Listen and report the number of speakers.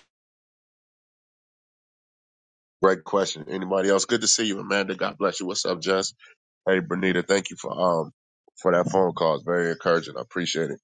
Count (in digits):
1